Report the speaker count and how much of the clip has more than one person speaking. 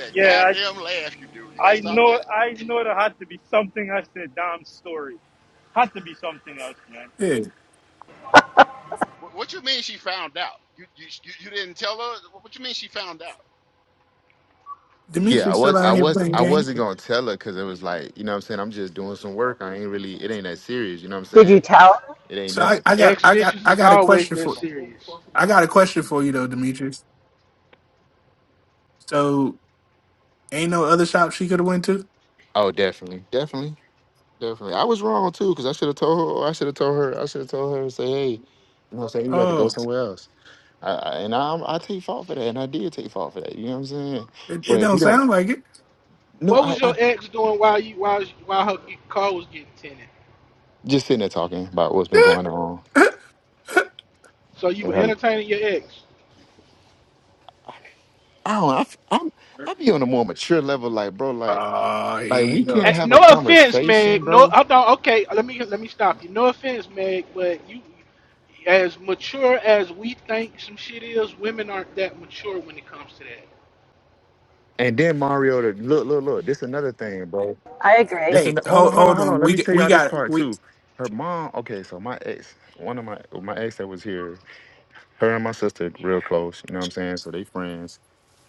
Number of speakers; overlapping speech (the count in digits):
6, about 12%